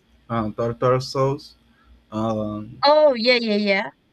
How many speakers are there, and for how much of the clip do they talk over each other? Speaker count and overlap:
2, no overlap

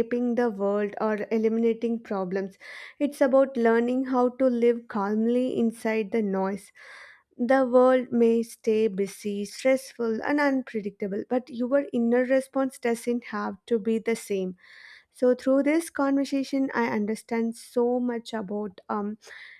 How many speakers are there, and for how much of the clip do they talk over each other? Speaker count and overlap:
1, no overlap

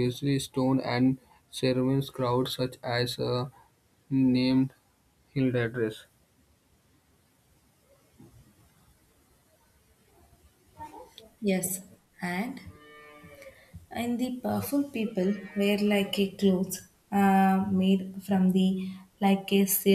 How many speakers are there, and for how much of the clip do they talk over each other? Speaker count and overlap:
2, no overlap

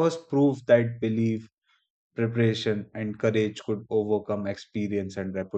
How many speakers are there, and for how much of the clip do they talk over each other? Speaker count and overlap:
1, no overlap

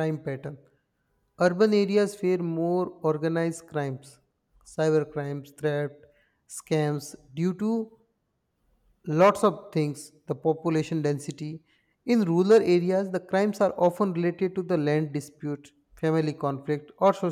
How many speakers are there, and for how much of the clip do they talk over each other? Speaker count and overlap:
1, no overlap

